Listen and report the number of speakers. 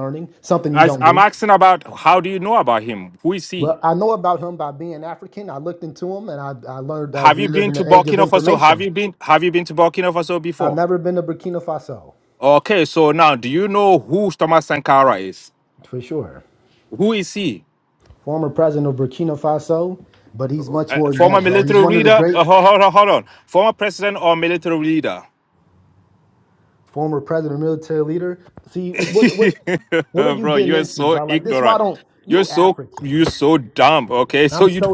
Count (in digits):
2